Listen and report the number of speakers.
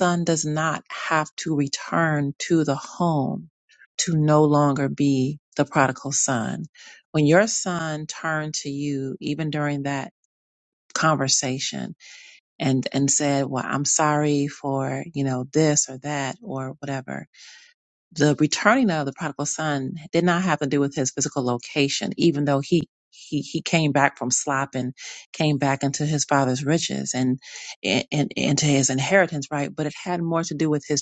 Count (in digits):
1